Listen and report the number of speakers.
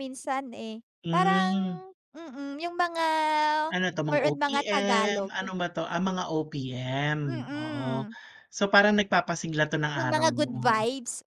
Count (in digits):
2